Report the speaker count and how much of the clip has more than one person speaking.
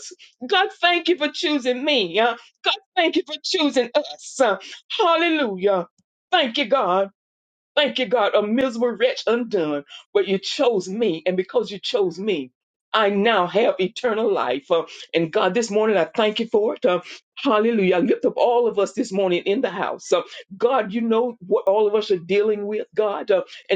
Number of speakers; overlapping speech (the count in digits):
1, no overlap